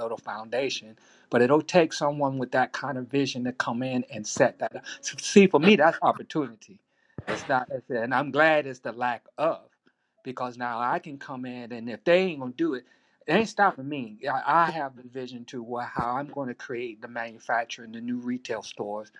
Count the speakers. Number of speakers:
1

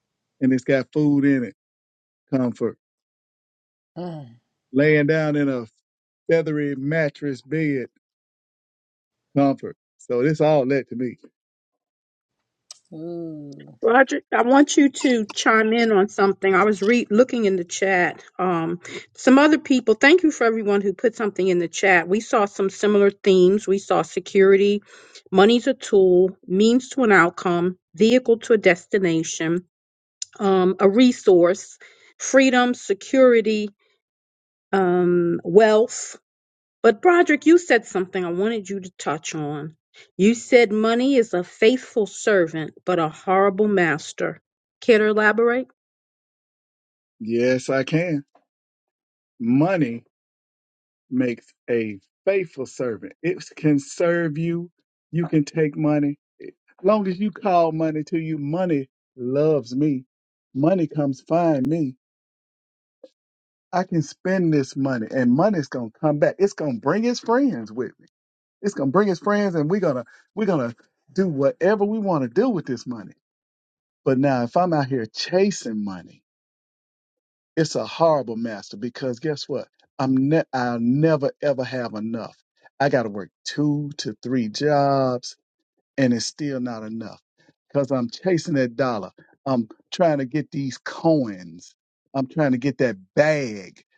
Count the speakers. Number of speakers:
3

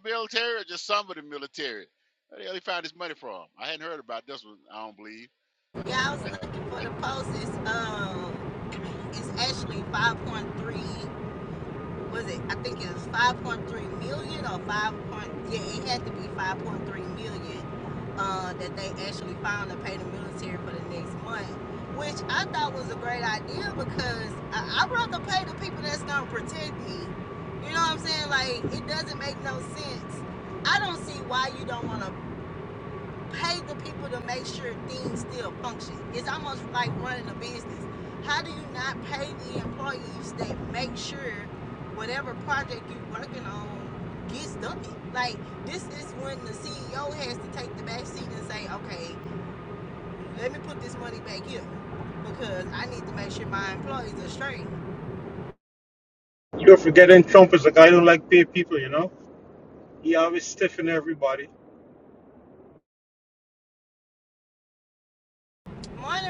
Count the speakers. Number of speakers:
3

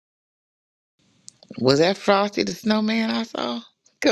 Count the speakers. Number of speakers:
1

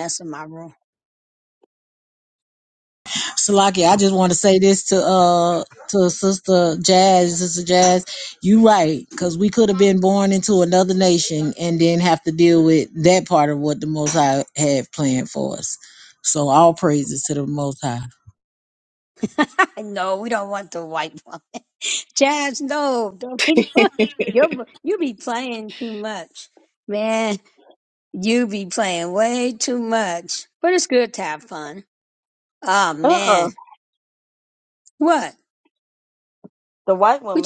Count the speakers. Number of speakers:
3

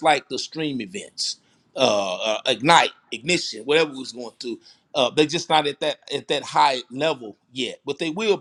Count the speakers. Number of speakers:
1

